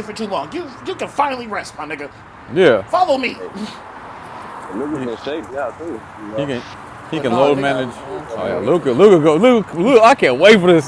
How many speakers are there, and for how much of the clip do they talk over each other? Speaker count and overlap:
three, about 23%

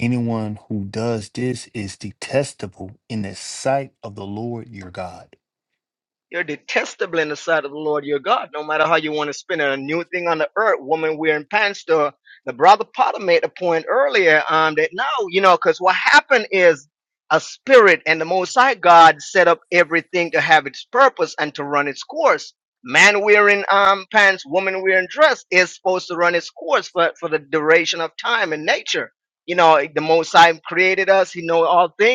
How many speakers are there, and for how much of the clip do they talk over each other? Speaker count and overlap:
two, no overlap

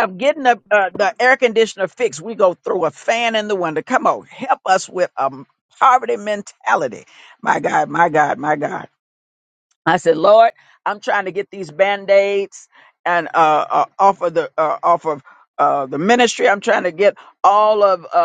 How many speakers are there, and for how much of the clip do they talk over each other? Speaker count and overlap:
one, no overlap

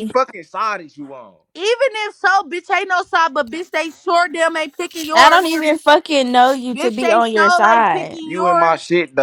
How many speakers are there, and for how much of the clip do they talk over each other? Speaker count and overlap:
three, about 25%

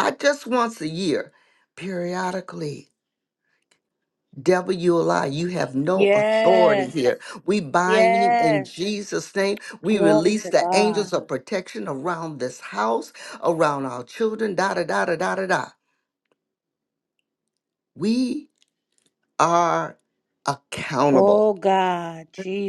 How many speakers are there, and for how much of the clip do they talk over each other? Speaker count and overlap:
two, about 14%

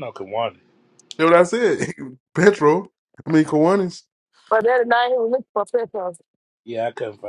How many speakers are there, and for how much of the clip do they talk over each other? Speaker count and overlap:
three, no overlap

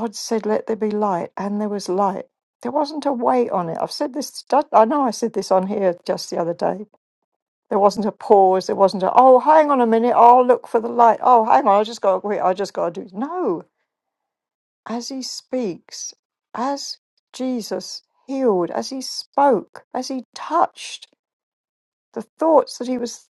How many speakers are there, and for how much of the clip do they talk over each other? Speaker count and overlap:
one, no overlap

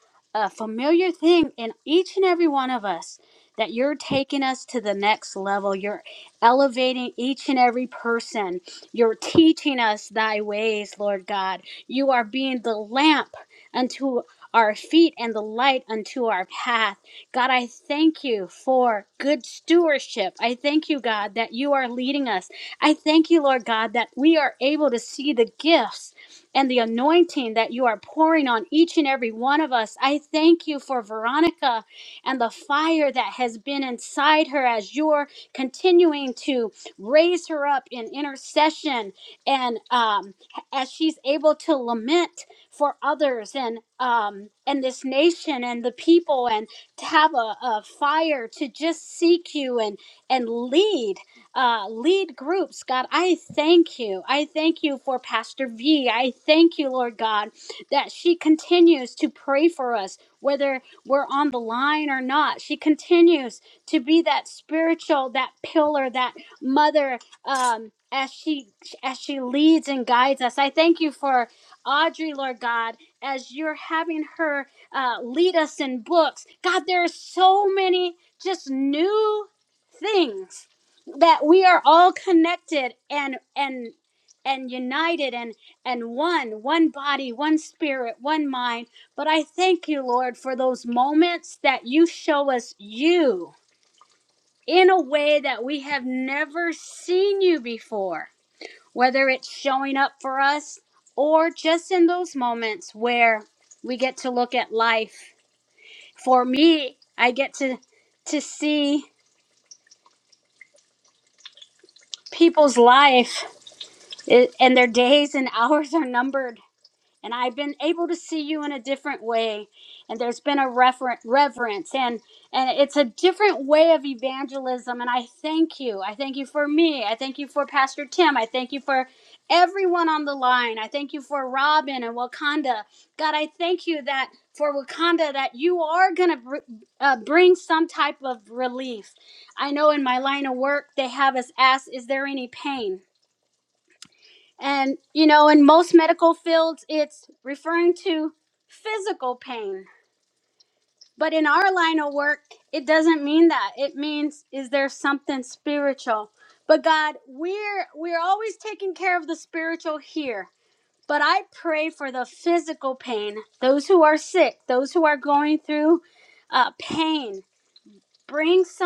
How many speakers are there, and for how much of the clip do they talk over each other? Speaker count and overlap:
one, no overlap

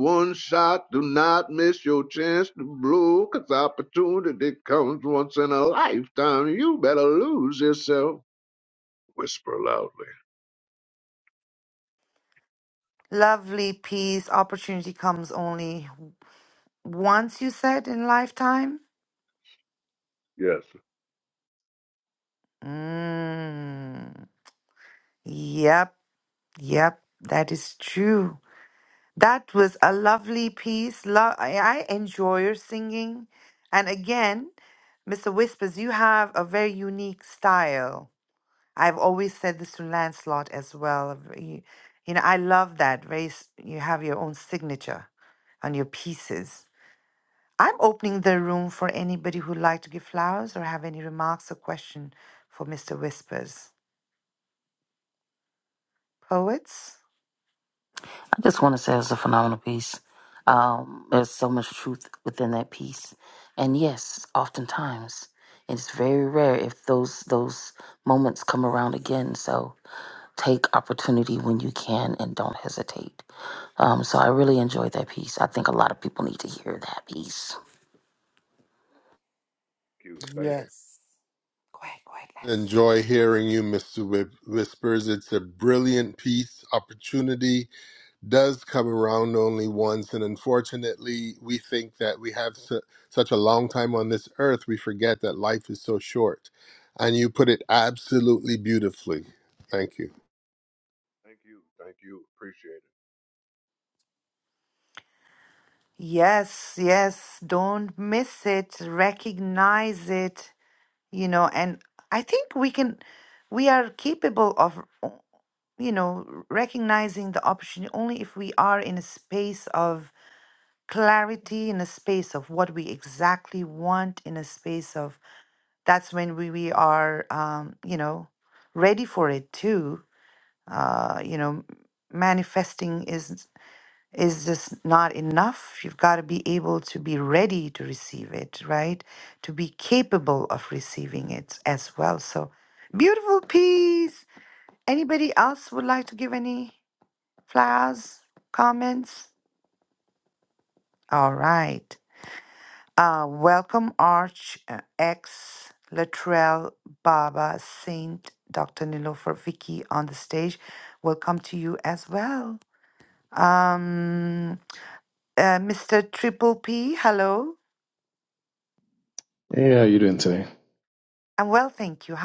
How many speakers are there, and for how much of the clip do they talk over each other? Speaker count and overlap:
five, under 1%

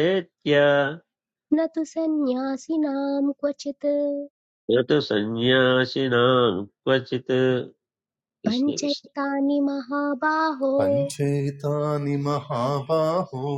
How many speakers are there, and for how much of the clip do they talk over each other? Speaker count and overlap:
three, about 4%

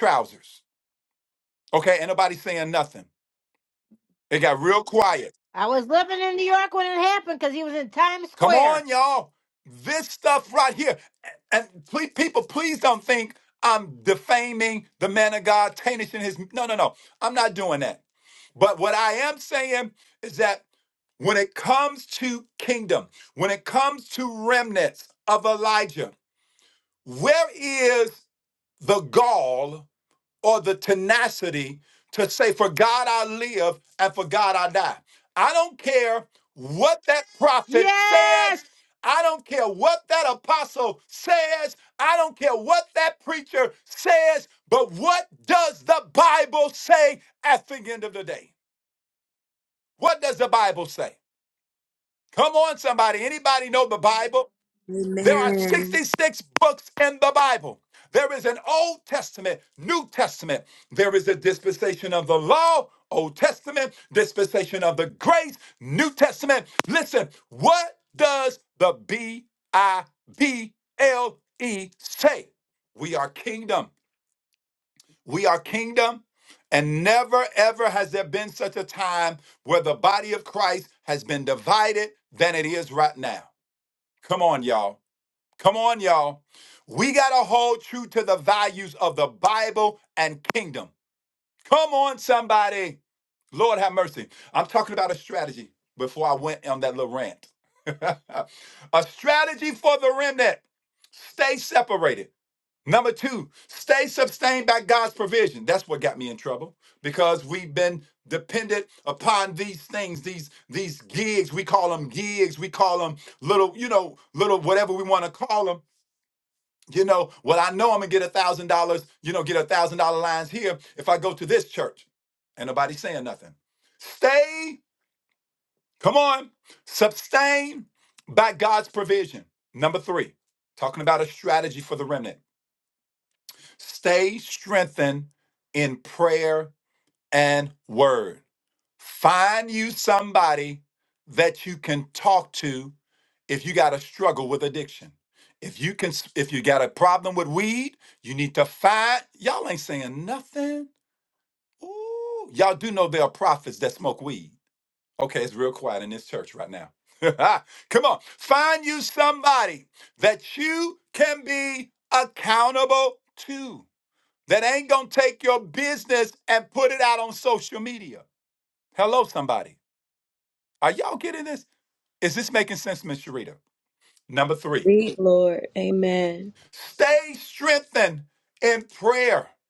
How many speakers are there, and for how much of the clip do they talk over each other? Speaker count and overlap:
three, about 1%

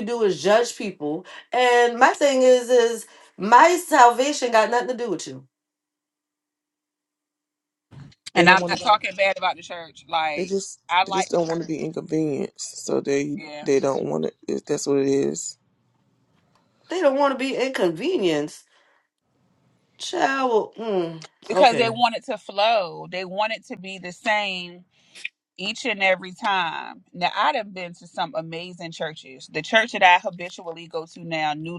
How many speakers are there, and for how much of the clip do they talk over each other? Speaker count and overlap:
three, about 6%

